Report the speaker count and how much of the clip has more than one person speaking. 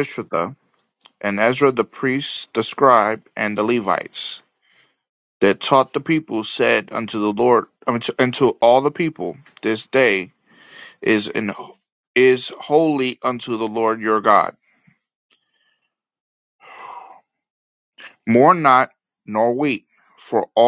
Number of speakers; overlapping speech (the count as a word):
one, no overlap